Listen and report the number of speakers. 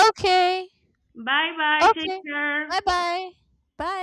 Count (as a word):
two